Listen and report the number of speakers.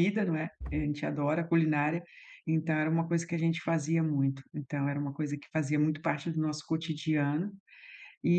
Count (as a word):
one